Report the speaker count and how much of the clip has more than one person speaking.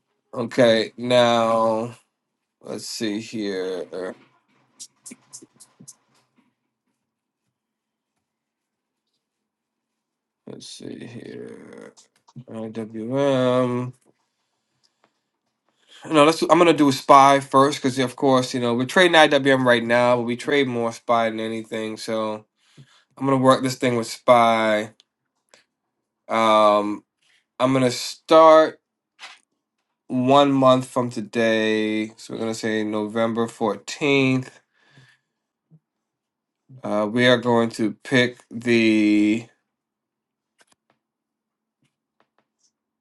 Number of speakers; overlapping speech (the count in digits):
1, no overlap